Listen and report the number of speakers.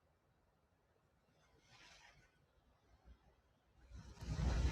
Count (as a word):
zero